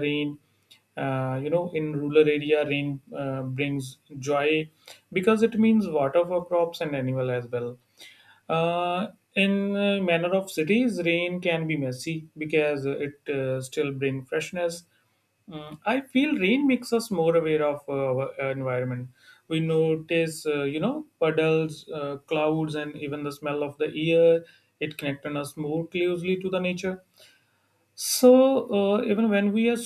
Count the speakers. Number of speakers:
one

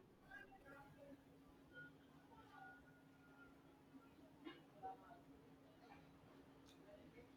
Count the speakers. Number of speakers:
zero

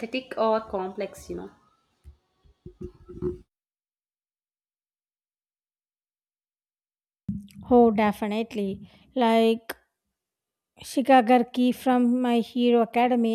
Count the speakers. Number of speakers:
two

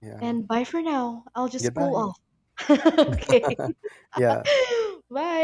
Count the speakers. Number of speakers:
two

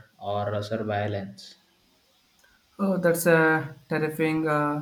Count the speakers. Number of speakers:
two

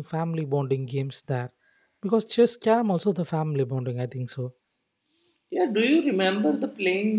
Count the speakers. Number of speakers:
two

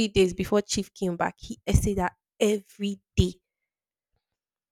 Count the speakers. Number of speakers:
one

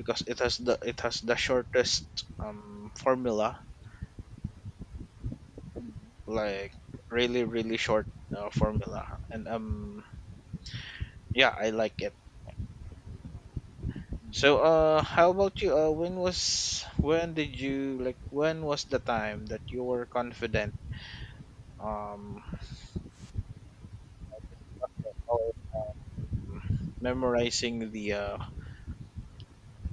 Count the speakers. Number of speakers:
one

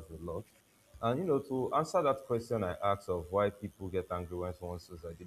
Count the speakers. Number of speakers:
one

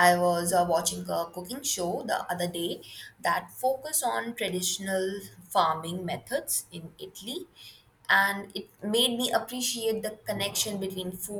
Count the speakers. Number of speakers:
one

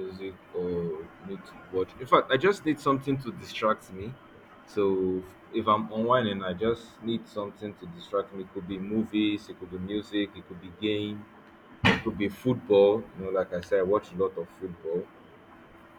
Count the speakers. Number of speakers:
one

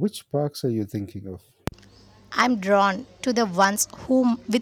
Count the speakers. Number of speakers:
two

